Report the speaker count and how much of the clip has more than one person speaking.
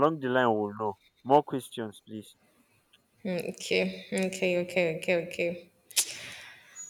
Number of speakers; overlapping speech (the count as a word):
two, no overlap